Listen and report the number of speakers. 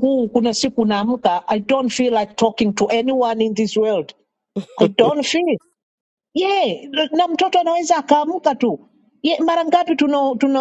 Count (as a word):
one